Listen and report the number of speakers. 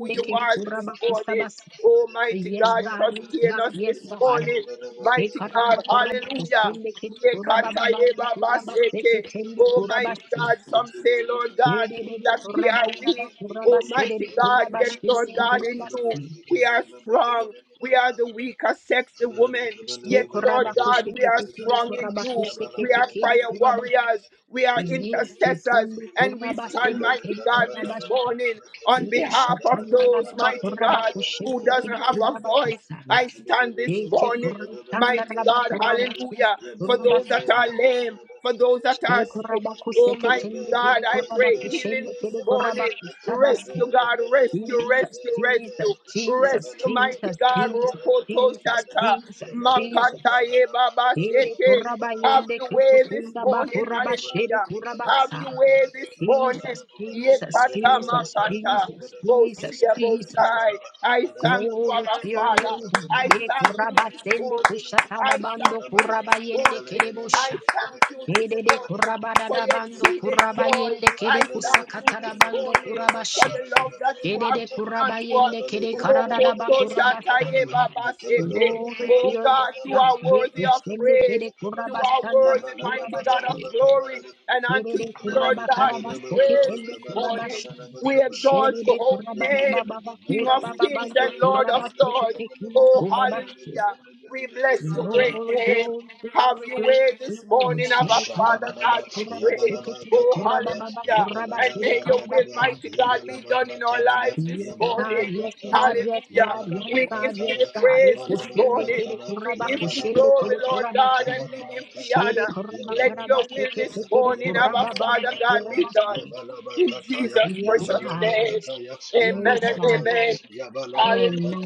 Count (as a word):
three